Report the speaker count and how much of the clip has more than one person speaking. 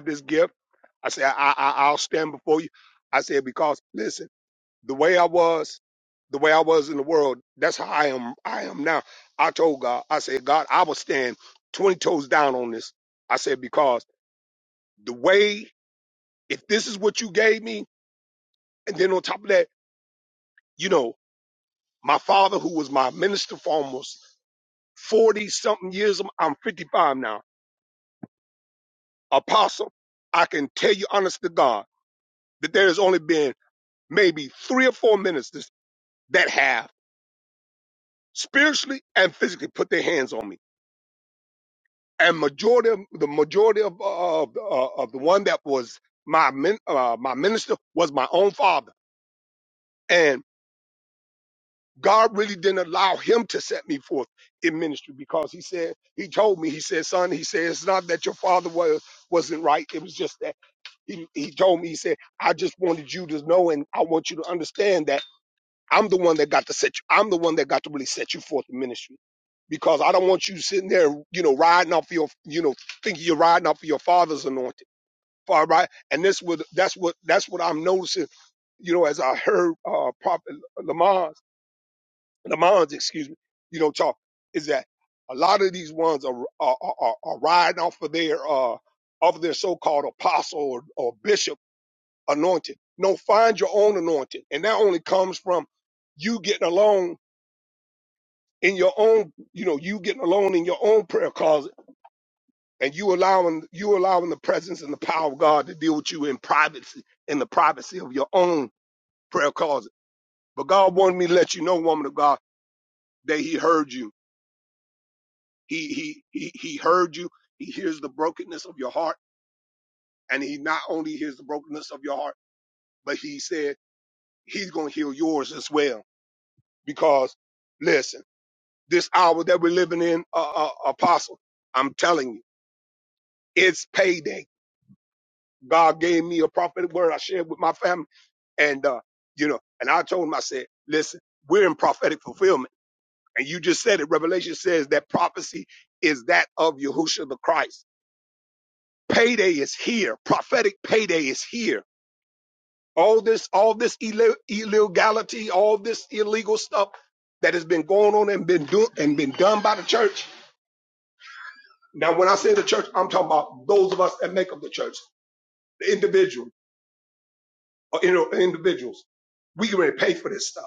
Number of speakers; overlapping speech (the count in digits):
1, no overlap